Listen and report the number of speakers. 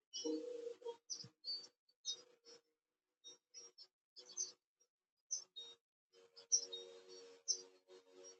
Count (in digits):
0